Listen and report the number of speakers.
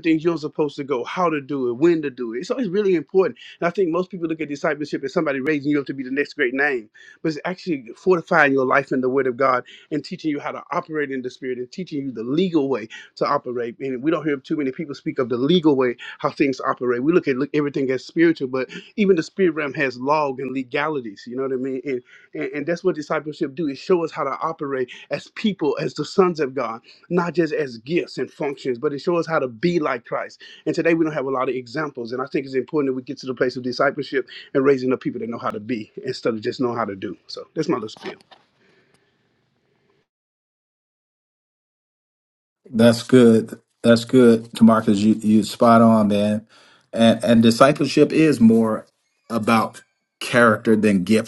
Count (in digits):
2